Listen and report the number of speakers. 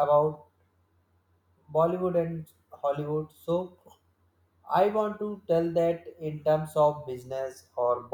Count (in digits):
1